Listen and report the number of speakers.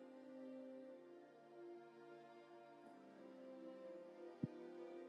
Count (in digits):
0